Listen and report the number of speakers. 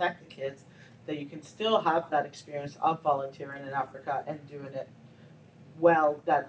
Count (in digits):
1